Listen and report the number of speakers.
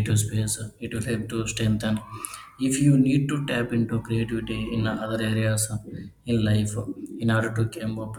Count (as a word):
one